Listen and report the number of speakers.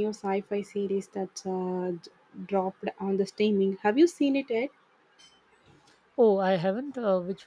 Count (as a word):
two